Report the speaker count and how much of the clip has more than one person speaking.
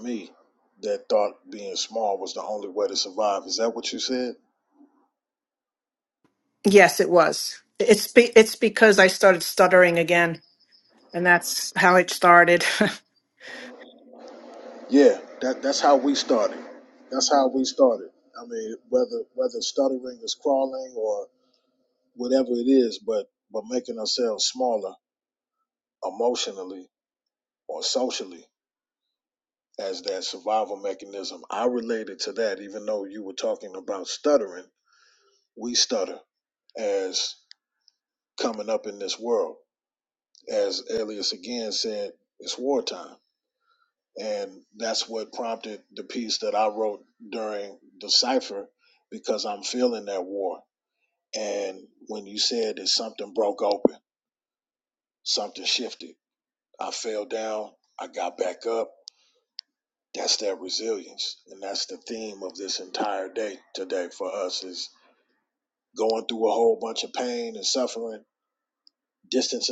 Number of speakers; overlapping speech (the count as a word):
two, no overlap